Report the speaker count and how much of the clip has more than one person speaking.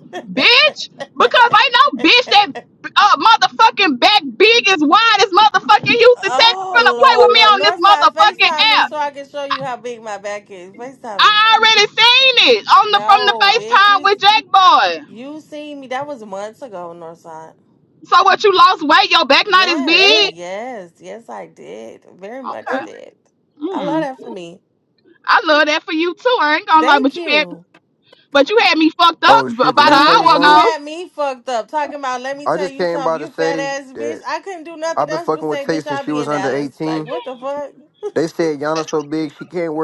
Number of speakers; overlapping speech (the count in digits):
3, about 30%